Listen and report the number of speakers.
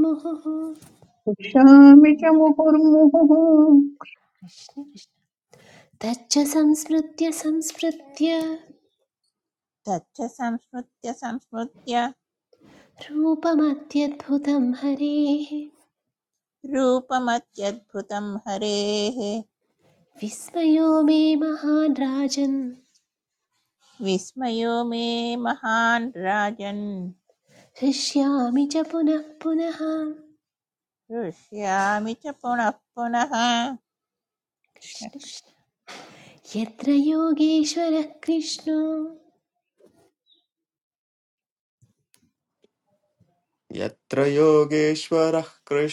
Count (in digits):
4